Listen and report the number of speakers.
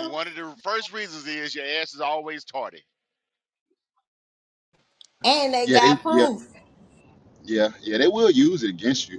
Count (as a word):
three